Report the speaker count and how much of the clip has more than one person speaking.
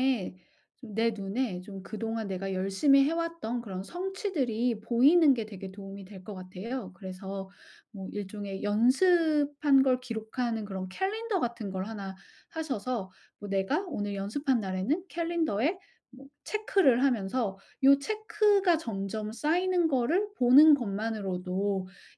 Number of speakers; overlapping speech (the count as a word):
one, no overlap